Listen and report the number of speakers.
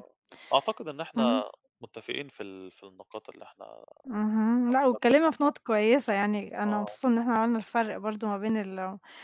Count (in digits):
2